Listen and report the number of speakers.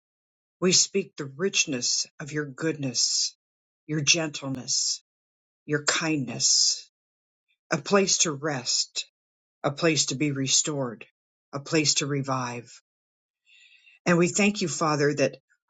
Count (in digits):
1